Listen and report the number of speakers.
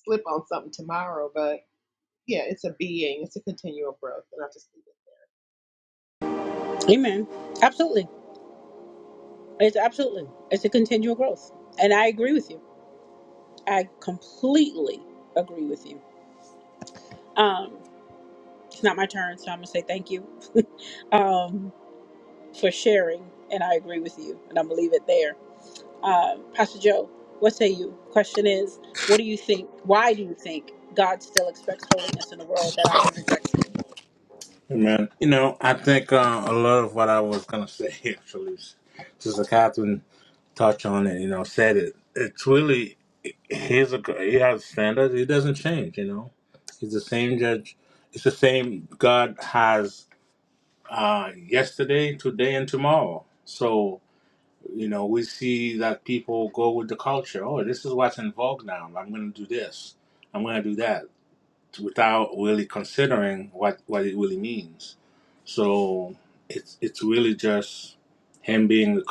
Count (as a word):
three